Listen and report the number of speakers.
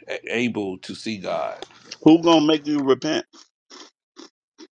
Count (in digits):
2